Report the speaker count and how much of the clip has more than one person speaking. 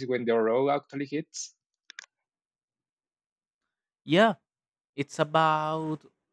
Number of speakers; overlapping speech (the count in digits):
2, no overlap